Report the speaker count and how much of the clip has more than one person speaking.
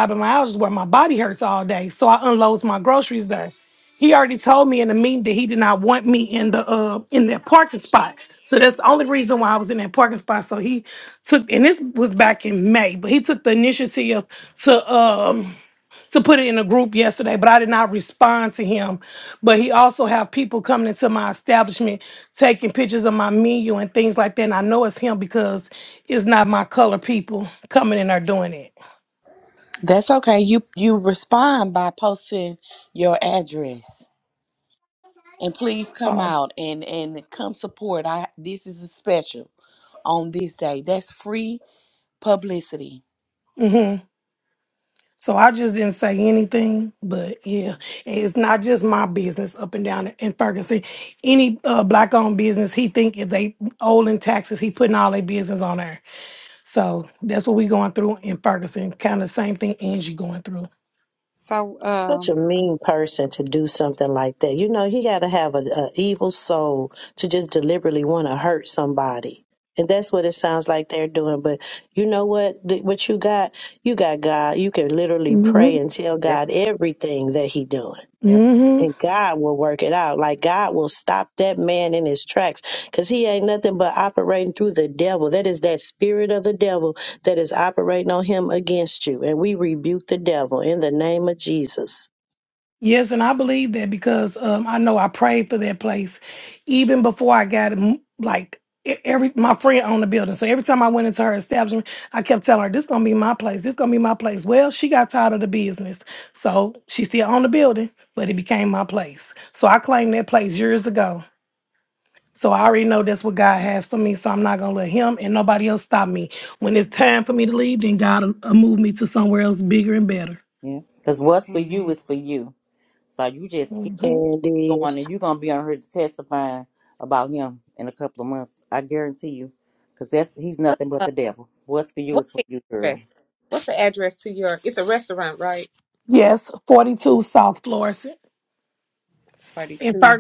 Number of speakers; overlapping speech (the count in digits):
6, about 2%